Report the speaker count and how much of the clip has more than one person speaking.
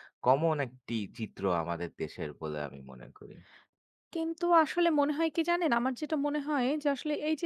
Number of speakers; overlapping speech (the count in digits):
2, no overlap